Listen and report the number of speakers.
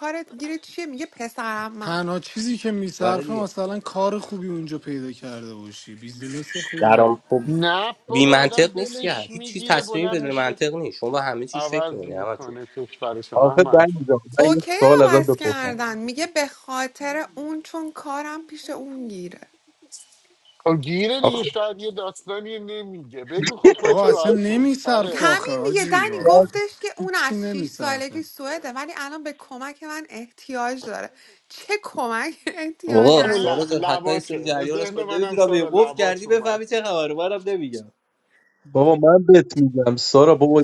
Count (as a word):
five